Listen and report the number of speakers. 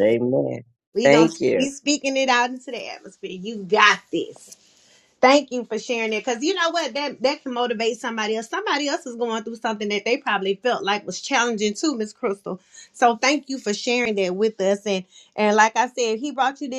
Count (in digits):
2